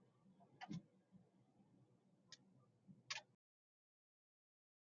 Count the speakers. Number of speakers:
0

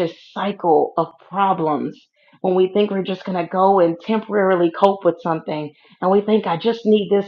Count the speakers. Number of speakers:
1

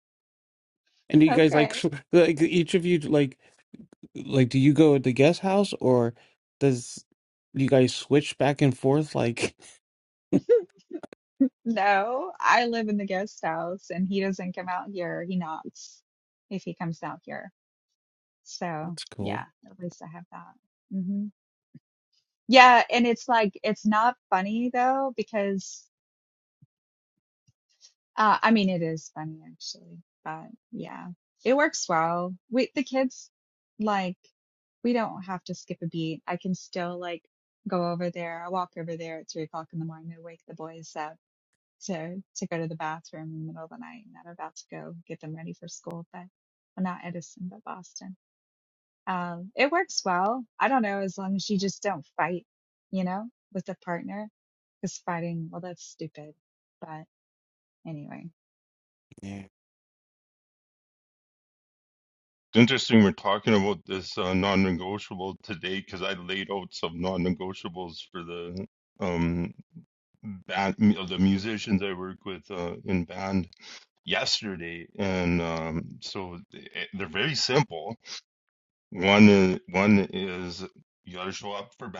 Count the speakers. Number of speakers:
3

